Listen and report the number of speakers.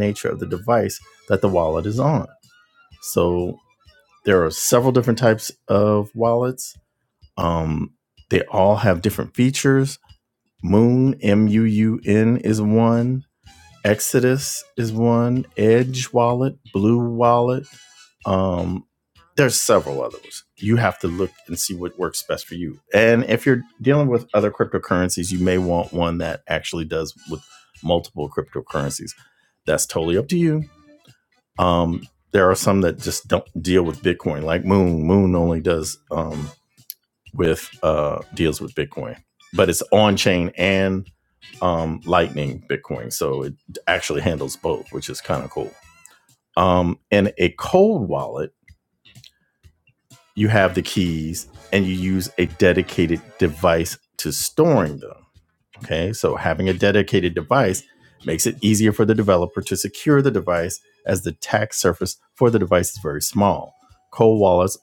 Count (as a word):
one